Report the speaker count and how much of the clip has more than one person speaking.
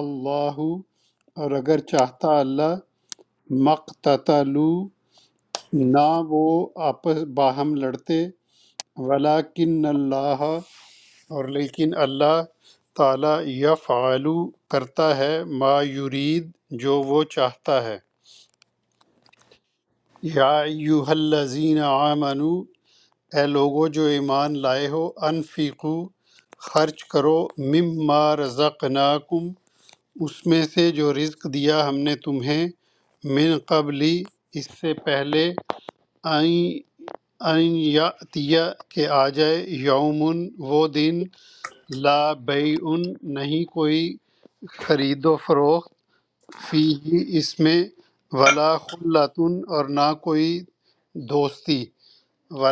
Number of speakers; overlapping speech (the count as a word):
one, no overlap